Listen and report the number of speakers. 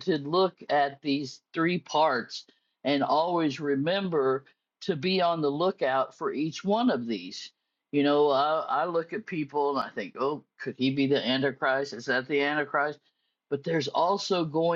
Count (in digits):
1